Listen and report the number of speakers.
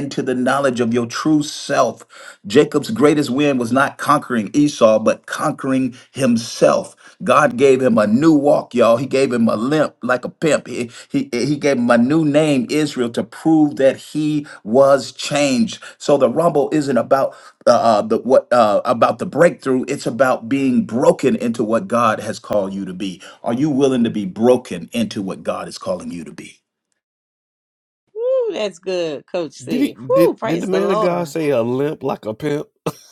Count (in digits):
3